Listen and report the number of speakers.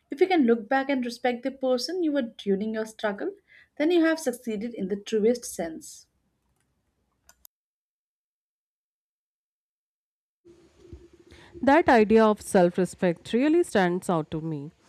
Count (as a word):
two